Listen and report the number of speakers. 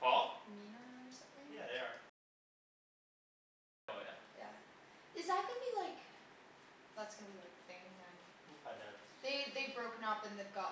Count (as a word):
two